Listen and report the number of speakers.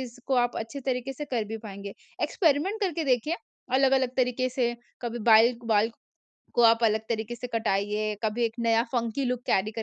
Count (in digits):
1